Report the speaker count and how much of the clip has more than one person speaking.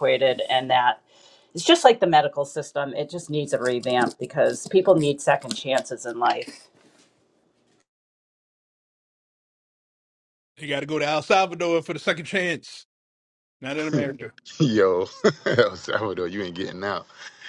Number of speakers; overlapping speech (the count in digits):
3, no overlap